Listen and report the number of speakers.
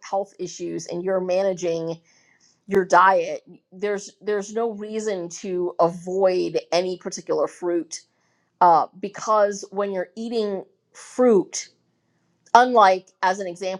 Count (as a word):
one